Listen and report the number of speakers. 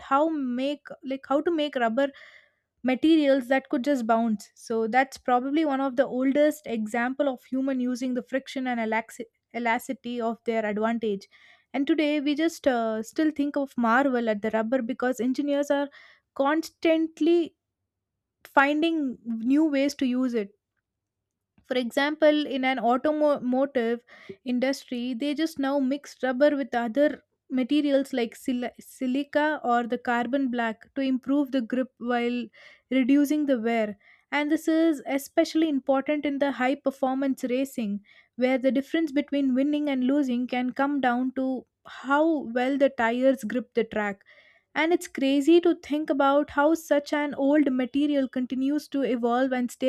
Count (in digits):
1